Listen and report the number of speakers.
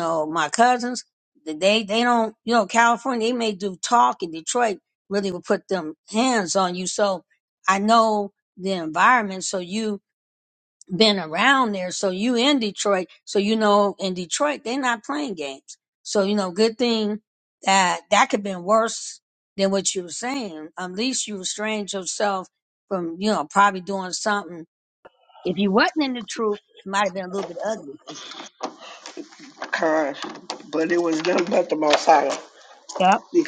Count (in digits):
2